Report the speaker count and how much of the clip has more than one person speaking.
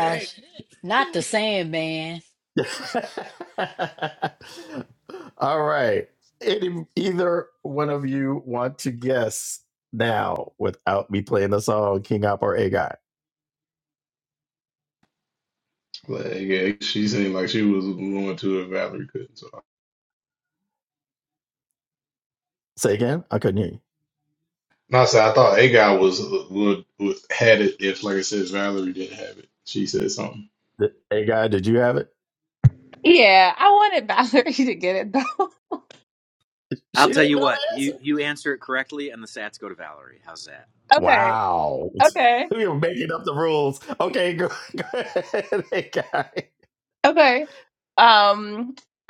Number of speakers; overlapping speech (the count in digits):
5, about 3%